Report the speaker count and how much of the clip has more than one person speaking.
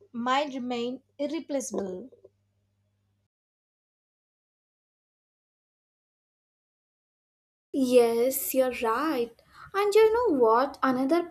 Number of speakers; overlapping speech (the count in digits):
2, no overlap